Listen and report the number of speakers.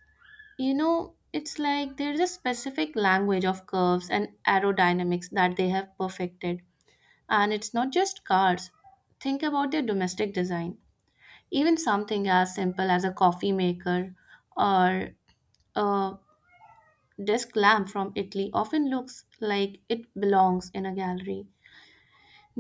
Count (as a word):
one